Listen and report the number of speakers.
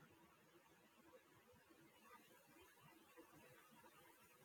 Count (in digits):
0